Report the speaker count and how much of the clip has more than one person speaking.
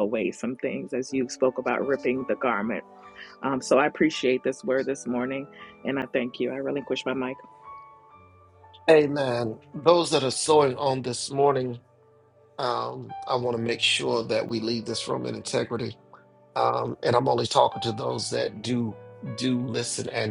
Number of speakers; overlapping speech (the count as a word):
two, no overlap